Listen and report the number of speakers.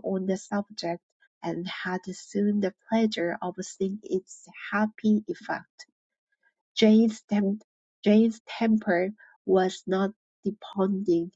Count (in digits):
1